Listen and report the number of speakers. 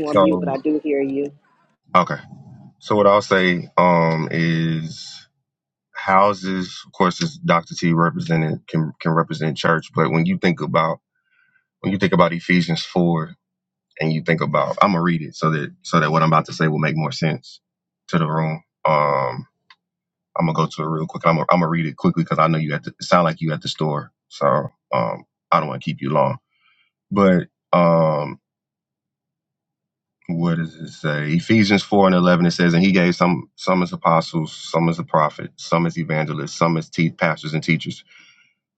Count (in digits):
2